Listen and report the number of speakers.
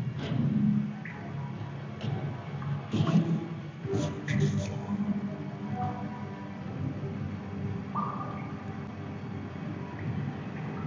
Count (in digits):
0